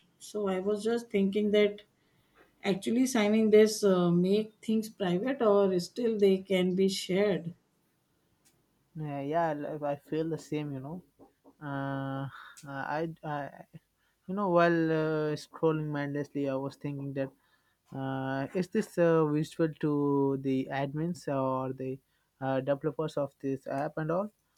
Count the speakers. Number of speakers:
2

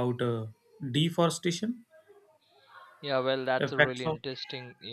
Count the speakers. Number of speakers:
2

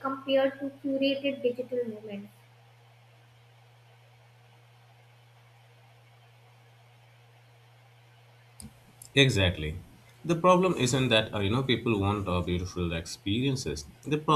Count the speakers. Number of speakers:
2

